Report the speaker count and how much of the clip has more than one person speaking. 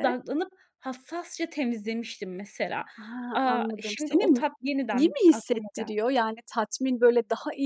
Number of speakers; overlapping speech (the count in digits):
2, about 30%